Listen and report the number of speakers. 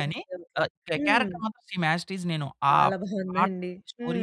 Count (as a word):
two